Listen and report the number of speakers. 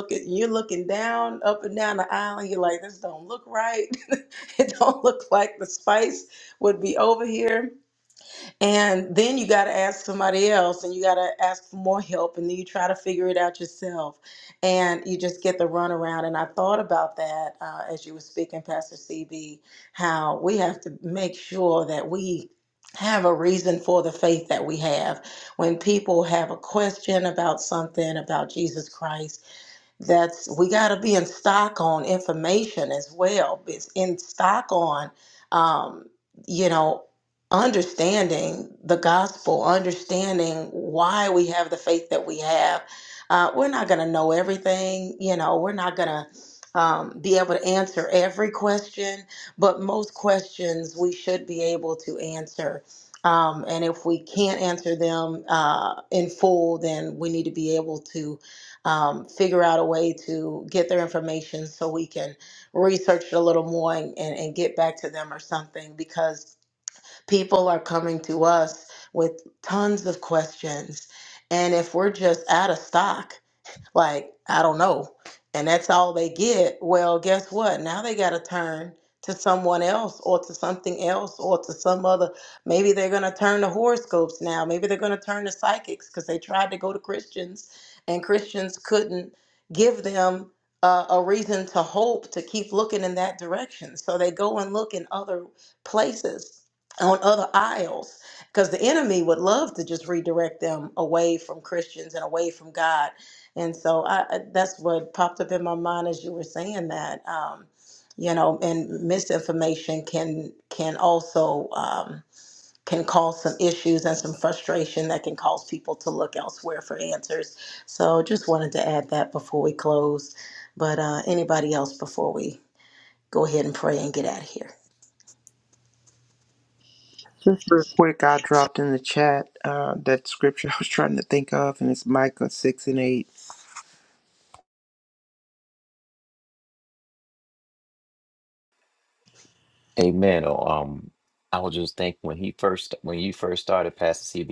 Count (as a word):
three